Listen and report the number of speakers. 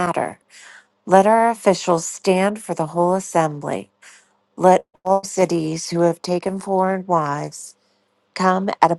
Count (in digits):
1